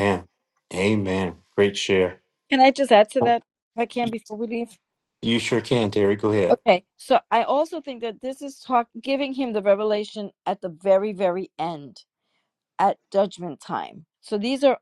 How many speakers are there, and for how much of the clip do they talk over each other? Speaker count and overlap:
two, about 1%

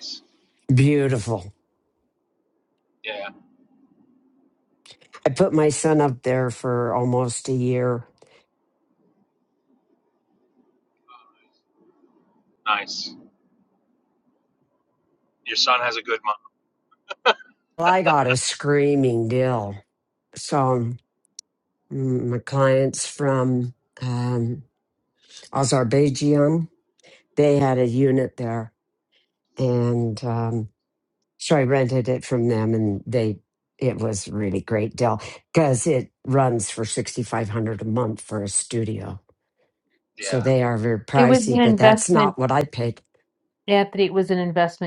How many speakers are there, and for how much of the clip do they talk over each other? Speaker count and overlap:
three, about 3%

